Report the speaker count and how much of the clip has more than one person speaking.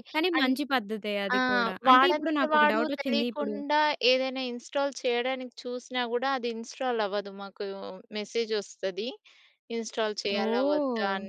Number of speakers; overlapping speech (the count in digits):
2, about 27%